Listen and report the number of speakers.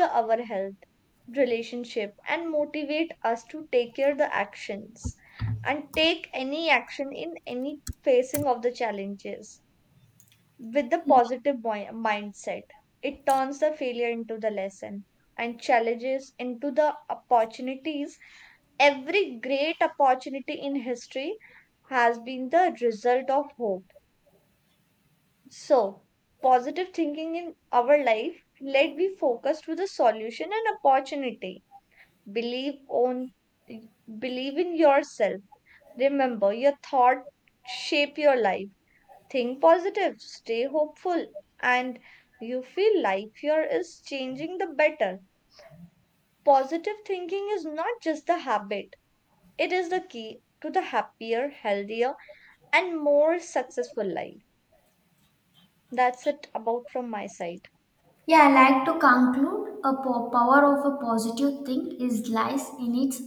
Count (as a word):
two